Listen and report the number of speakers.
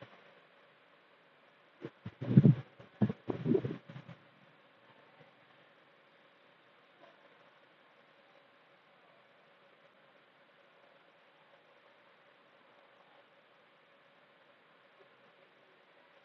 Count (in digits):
0